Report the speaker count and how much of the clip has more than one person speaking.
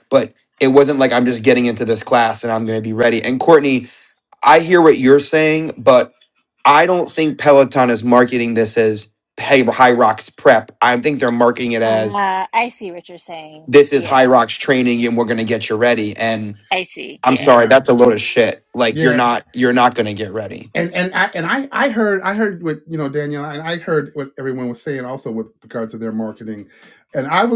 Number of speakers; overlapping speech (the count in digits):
3, about 7%